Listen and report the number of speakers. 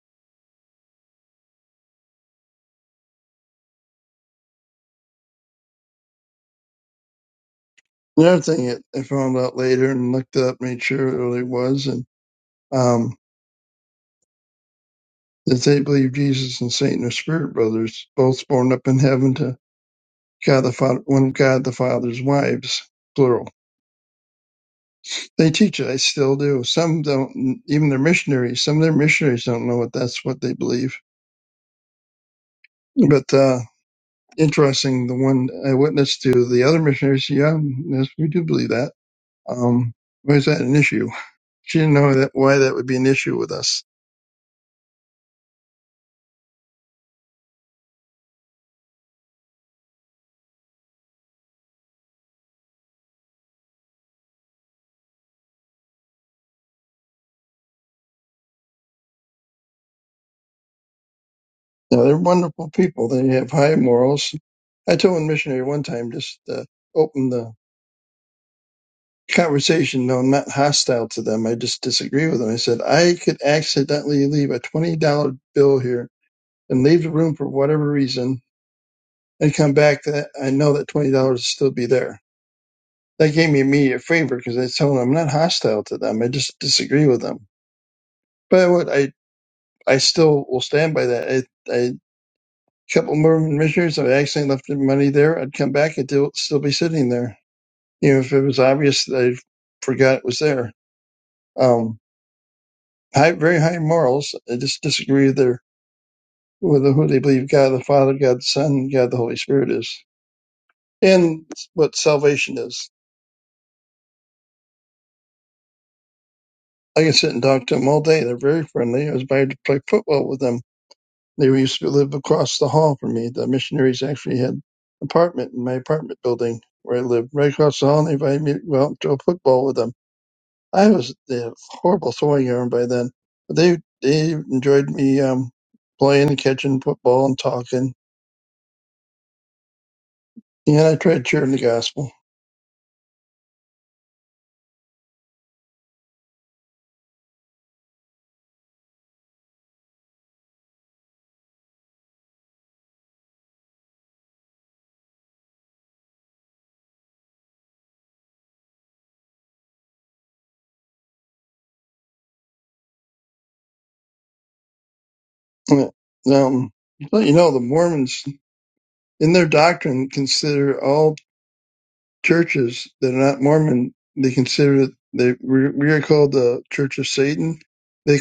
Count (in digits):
1